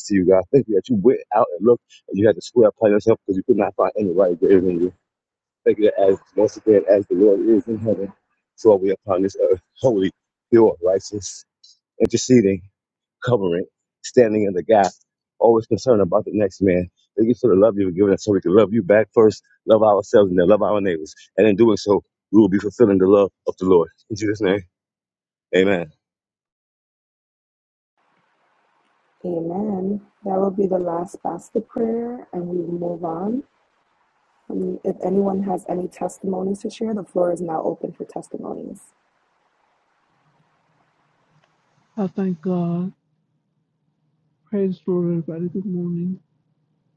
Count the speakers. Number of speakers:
3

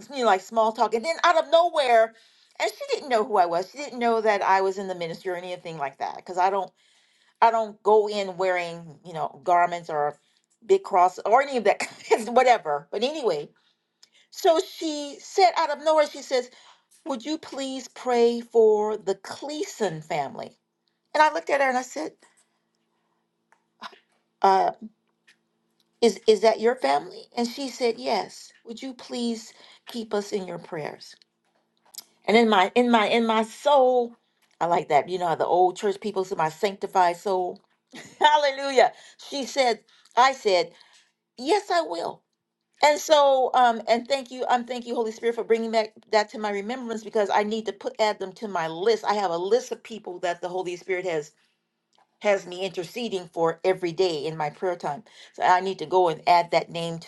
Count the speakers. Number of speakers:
1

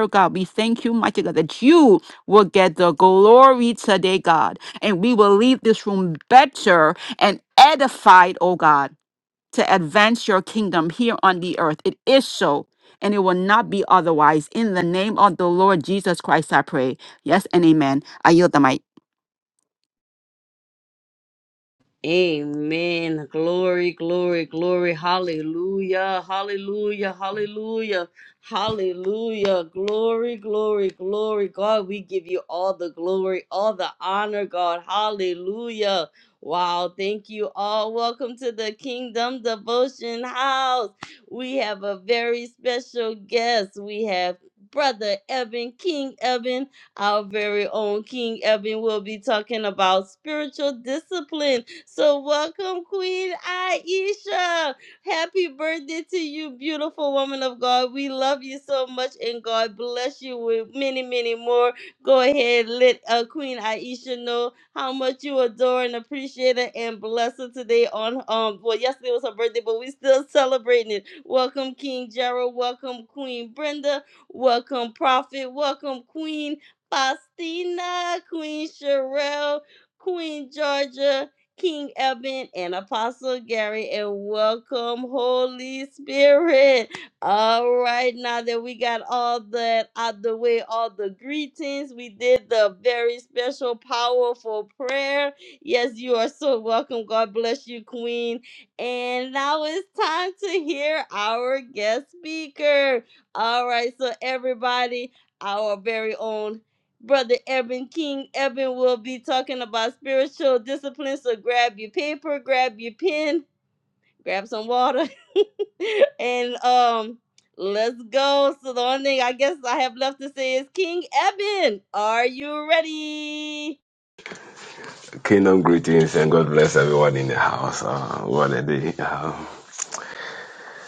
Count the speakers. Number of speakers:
3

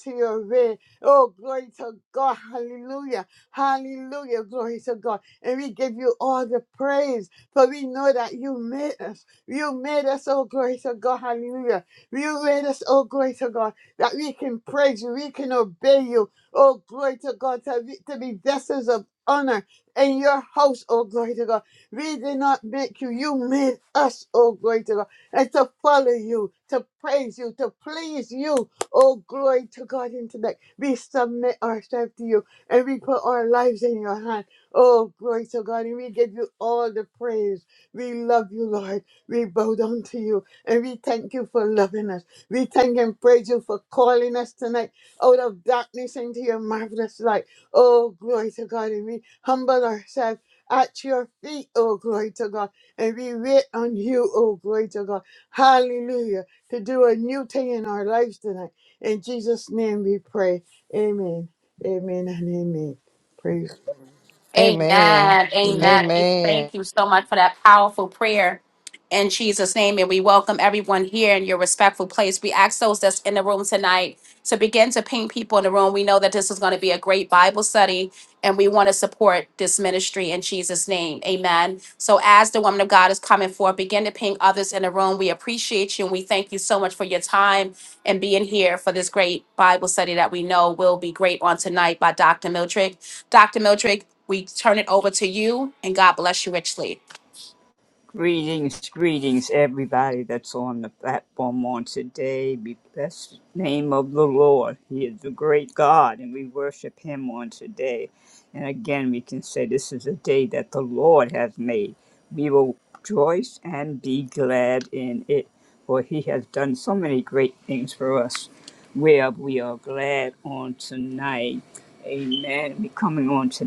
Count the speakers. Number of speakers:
4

